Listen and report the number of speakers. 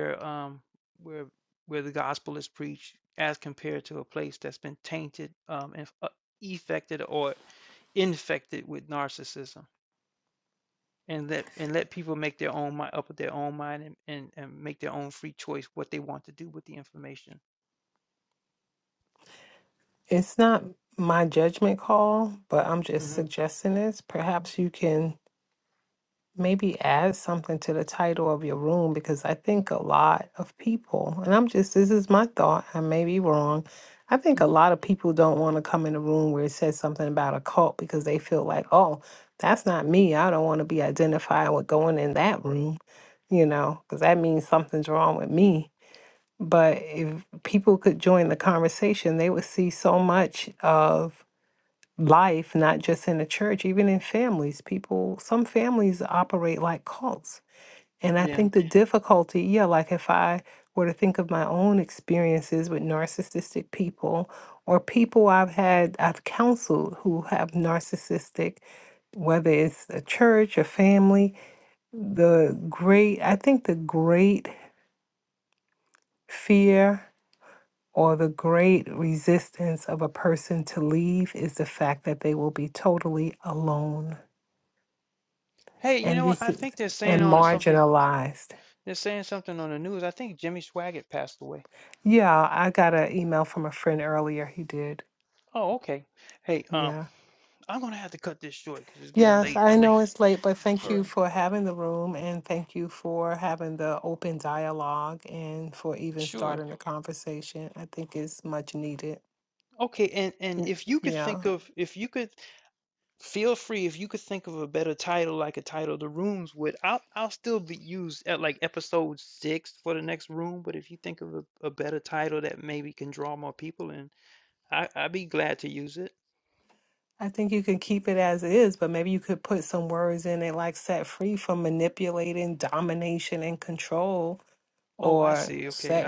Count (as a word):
two